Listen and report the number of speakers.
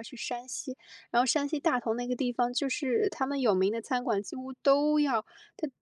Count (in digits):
1